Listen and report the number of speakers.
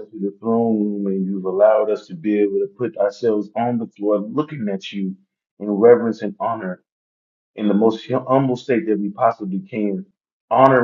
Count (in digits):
1